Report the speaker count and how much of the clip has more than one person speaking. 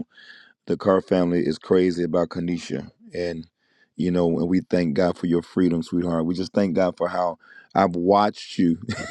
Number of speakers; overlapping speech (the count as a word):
one, no overlap